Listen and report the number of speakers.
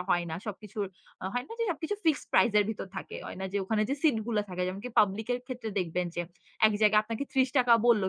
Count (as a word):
one